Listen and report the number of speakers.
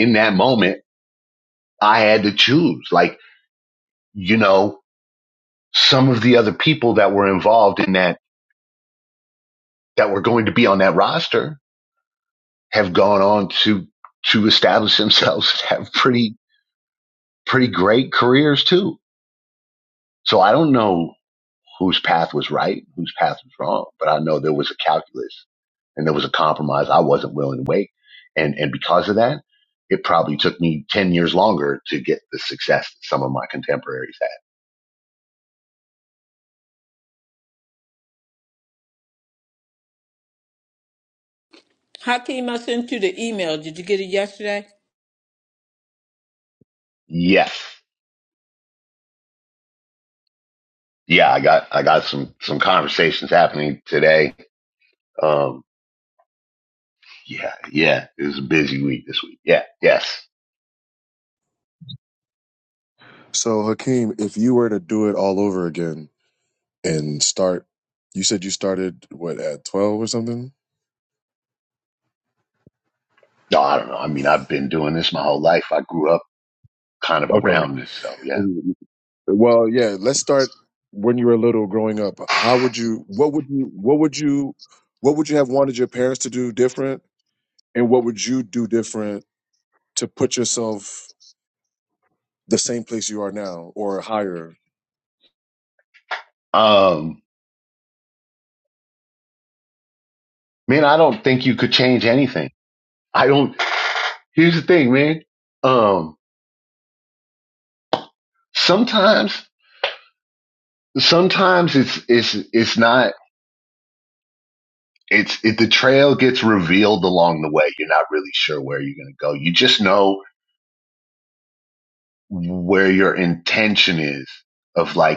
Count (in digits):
3